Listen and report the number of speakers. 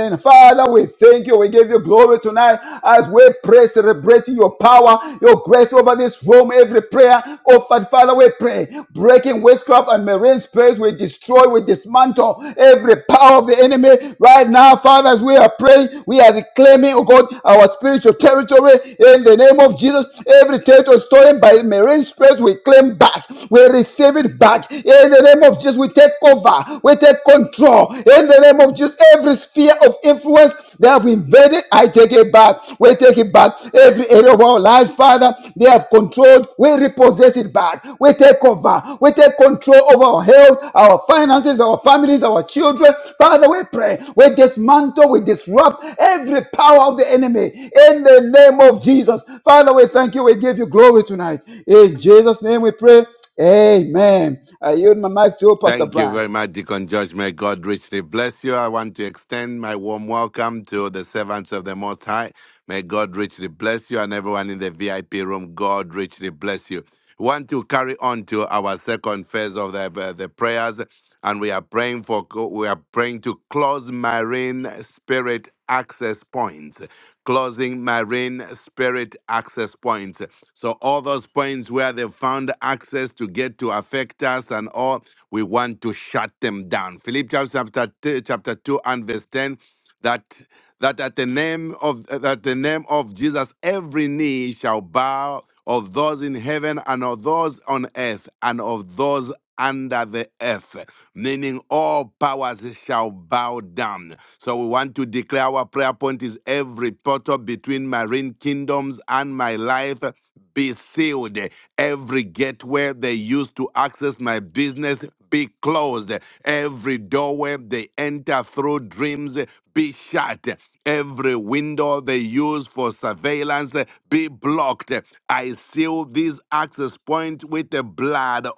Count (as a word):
two